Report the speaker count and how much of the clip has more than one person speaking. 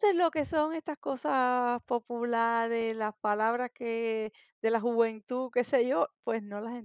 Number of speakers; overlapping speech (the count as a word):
one, no overlap